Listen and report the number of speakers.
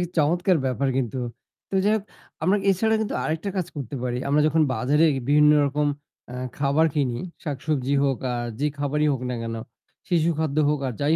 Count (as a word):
one